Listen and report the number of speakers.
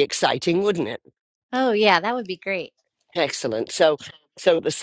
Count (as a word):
two